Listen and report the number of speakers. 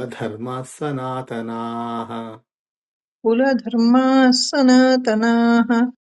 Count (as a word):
two